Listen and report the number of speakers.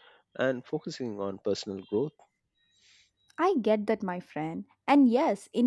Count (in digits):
2